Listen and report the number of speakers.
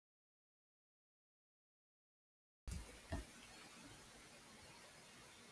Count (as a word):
zero